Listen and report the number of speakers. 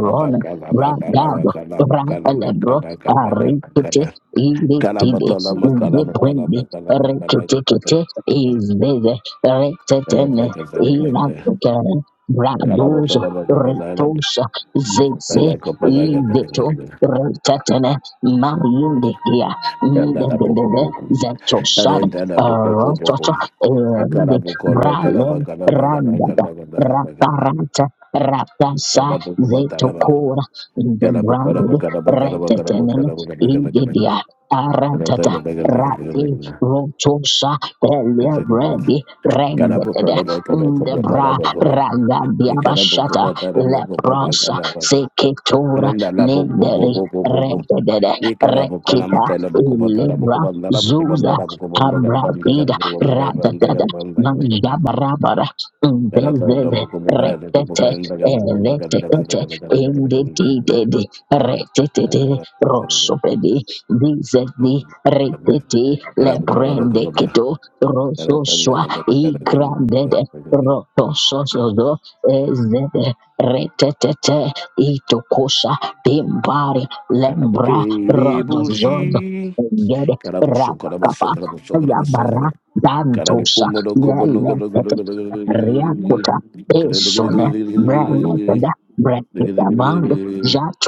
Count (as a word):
two